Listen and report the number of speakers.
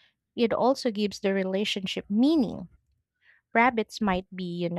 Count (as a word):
one